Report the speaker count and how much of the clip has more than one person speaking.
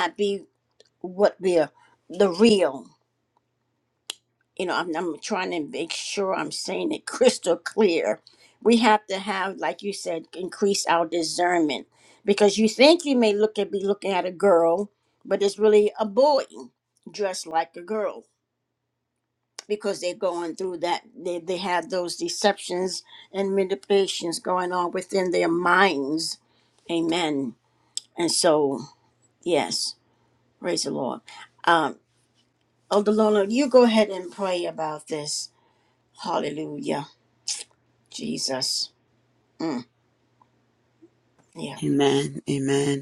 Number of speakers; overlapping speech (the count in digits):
2, under 1%